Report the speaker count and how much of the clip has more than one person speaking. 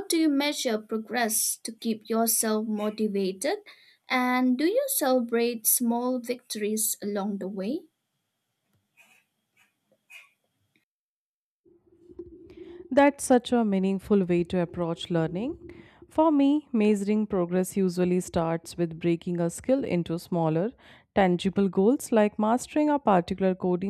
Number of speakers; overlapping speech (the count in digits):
2, no overlap